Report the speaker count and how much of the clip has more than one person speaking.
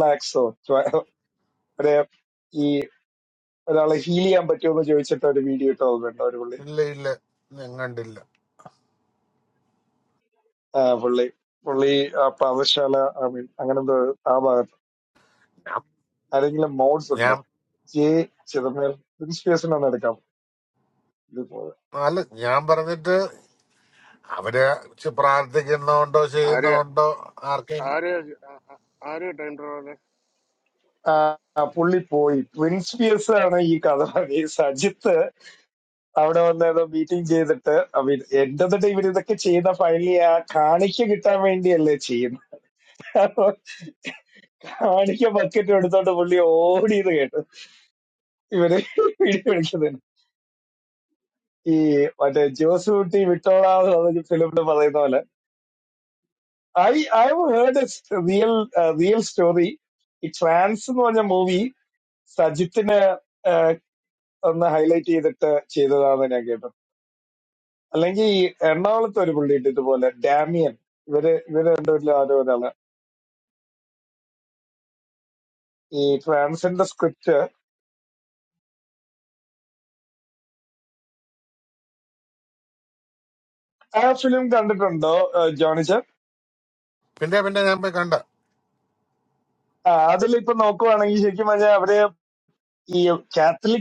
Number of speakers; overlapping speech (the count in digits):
3, about 1%